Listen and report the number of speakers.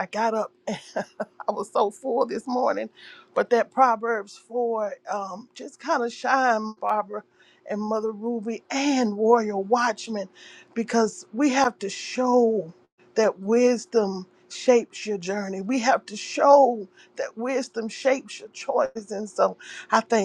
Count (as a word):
one